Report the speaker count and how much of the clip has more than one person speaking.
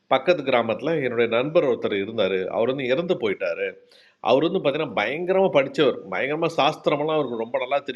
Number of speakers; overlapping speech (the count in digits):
1, no overlap